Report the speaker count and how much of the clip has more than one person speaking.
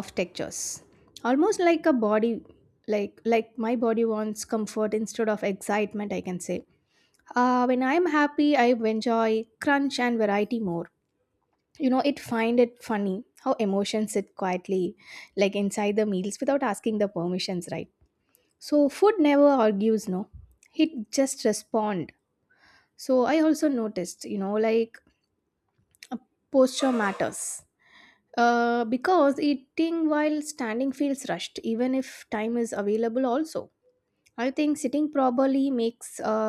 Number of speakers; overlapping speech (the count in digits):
1, no overlap